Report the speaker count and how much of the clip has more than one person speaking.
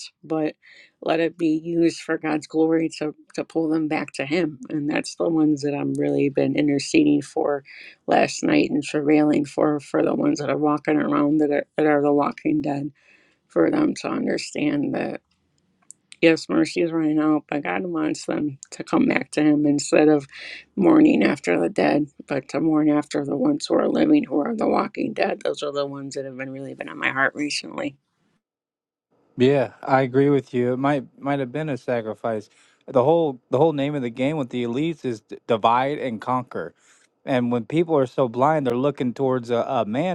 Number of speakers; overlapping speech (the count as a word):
two, no overlap